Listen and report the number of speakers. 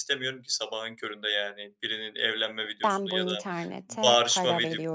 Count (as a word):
two